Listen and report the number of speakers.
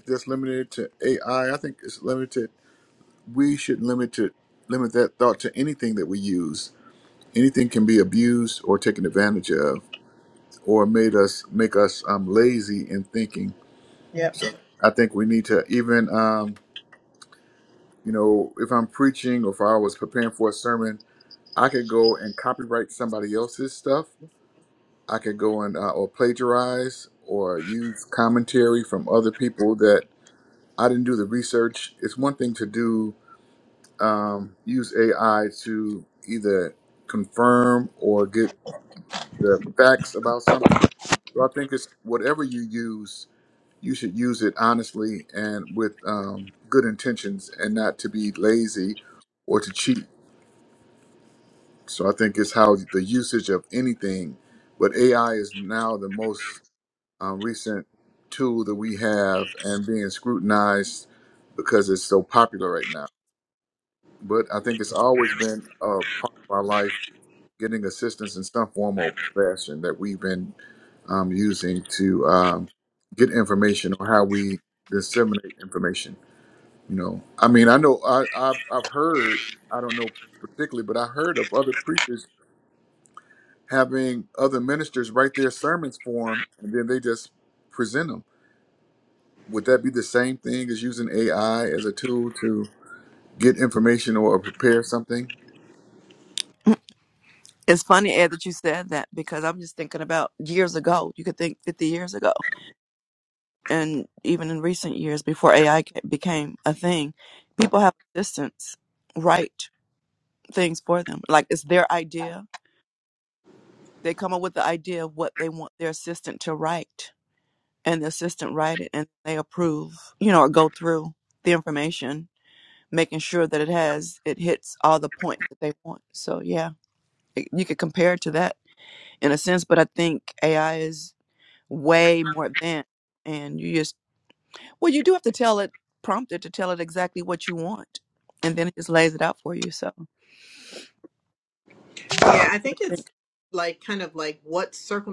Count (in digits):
3